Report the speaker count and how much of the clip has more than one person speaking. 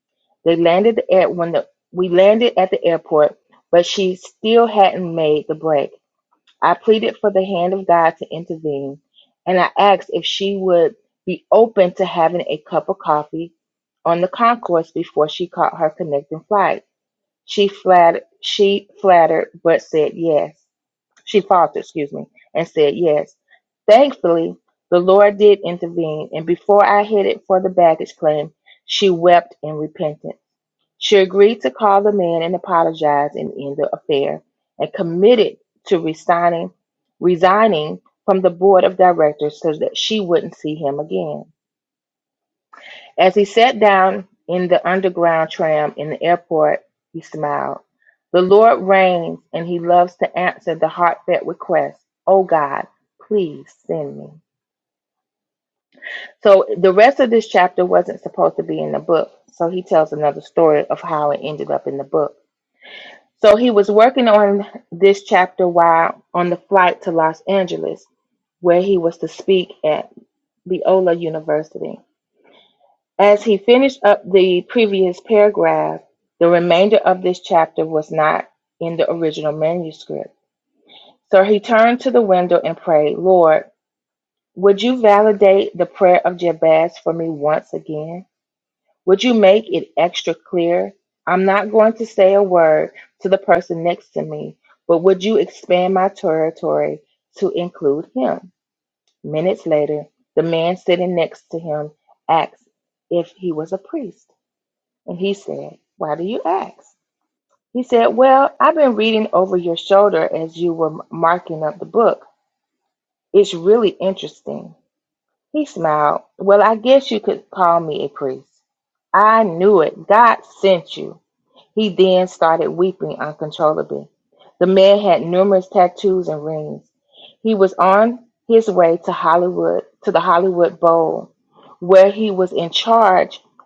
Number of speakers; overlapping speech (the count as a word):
one, no overlap